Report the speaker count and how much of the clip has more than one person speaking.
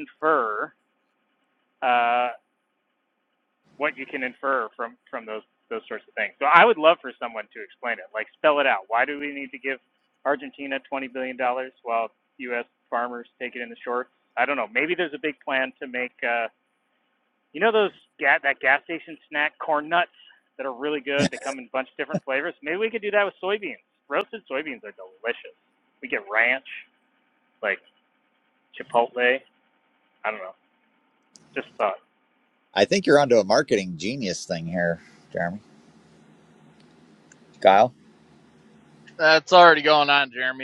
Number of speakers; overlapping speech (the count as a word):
three, no overlap